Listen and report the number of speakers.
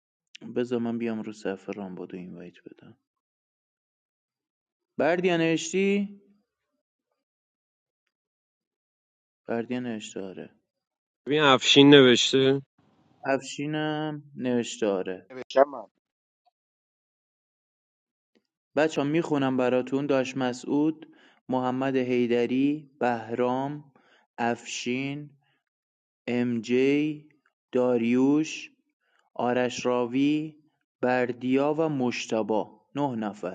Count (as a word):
two